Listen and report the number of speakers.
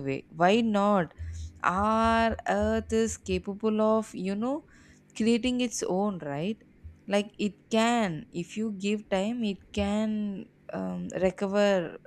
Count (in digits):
1